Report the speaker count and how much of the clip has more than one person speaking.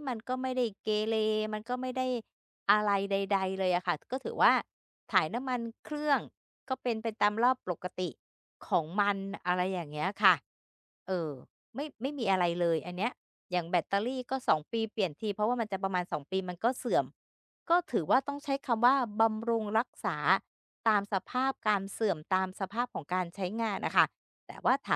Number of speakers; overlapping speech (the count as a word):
one, no overlap